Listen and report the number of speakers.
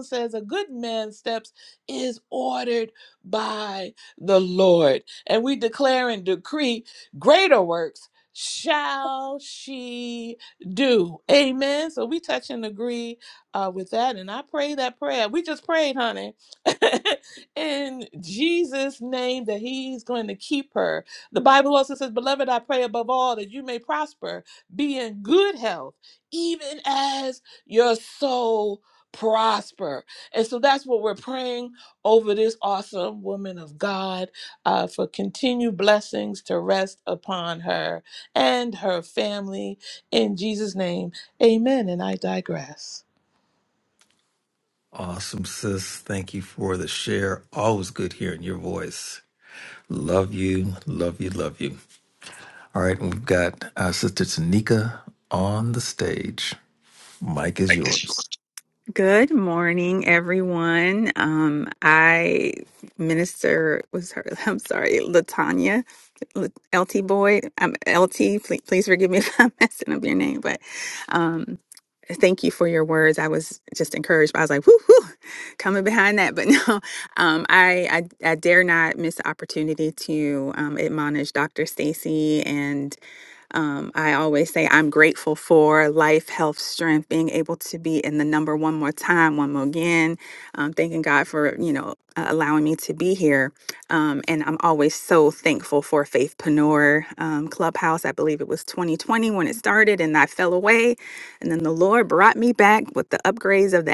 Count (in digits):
3